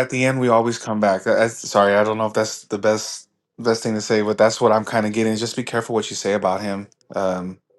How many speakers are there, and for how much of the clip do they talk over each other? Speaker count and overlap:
one, no overlap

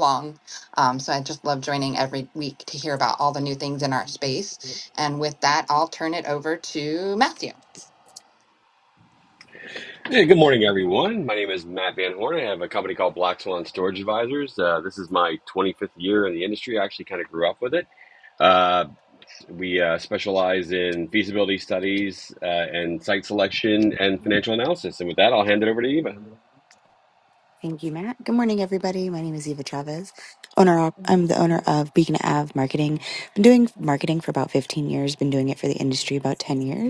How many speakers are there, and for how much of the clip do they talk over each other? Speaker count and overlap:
three, no overlap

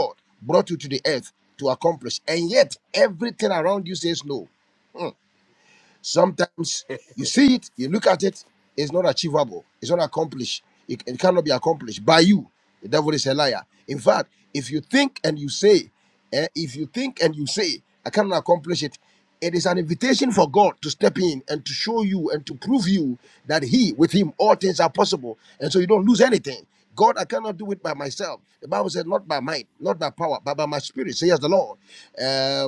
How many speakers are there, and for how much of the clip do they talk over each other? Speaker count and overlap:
one, no overlap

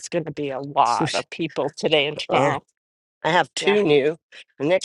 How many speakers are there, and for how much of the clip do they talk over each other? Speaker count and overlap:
two, about 14%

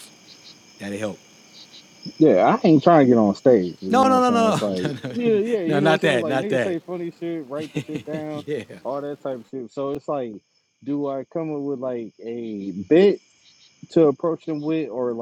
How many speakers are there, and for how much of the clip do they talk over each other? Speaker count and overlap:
two, about 19%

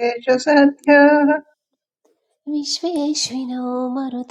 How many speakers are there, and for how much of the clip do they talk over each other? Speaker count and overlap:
two, no overlap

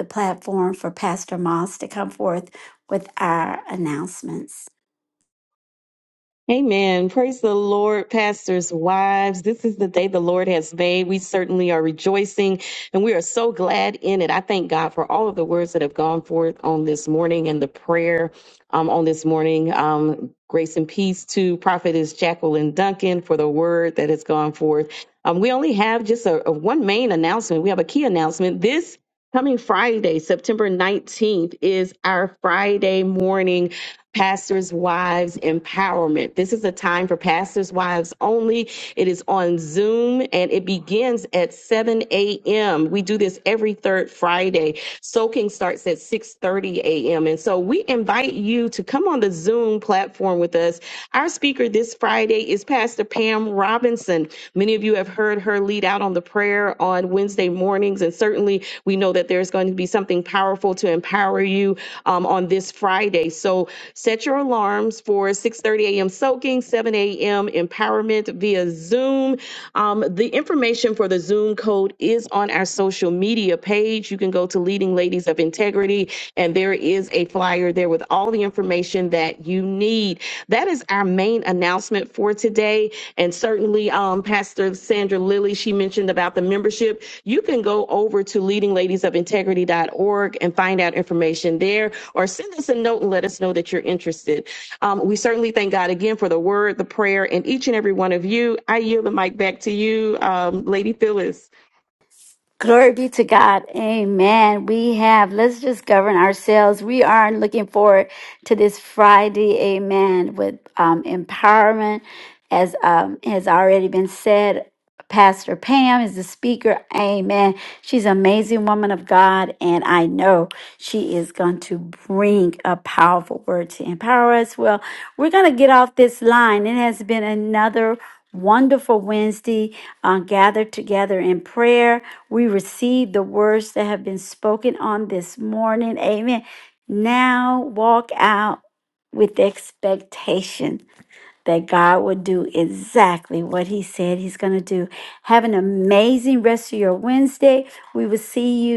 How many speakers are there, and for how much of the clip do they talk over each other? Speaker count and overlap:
two, no overlap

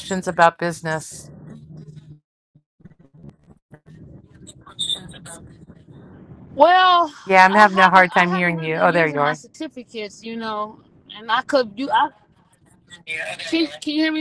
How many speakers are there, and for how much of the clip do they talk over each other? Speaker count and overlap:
two, about 13%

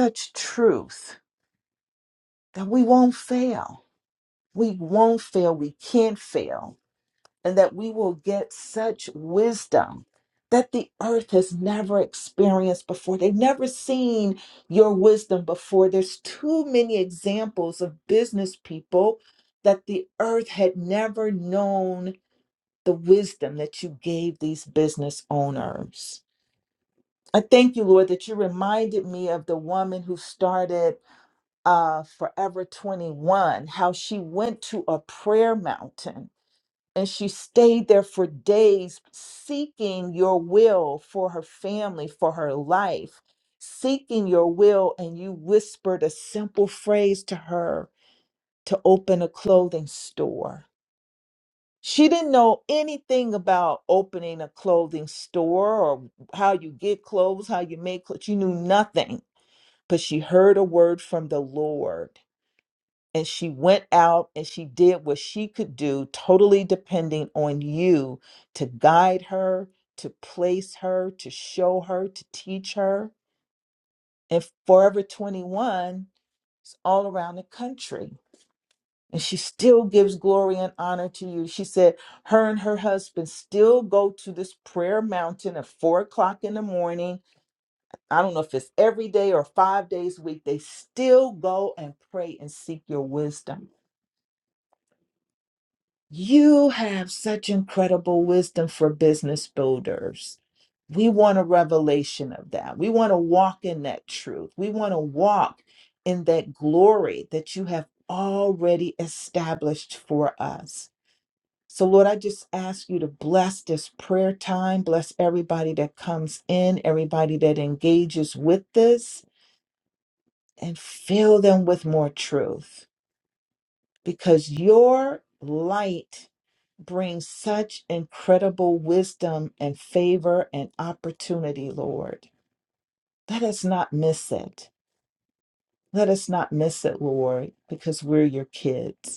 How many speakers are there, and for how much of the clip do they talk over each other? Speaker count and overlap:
one, no overlap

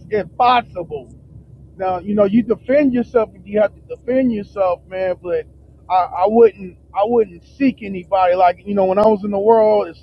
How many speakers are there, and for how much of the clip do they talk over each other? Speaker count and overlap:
one, no overlap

